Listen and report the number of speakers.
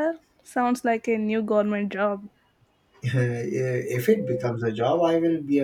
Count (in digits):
2